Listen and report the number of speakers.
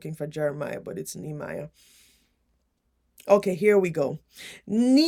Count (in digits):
1